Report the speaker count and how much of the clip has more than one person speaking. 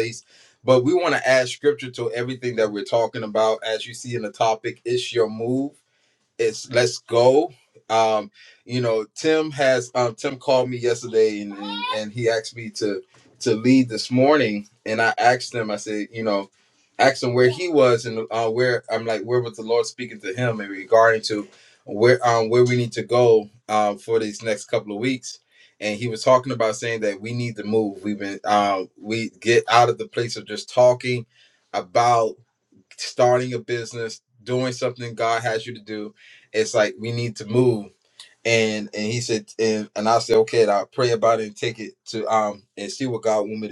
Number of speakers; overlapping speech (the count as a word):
one, no overlap